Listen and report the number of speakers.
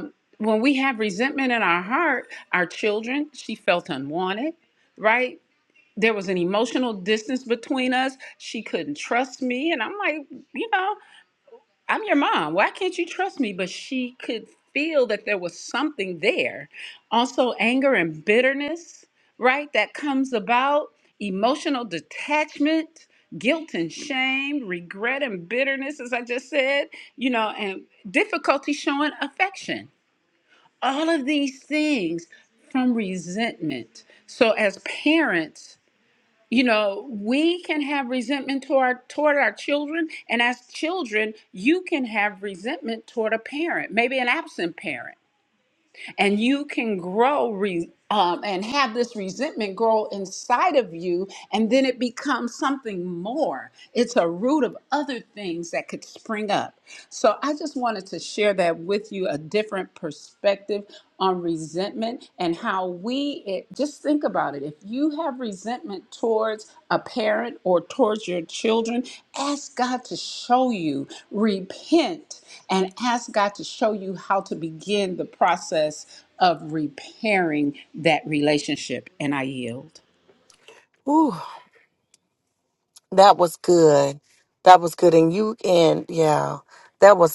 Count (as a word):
two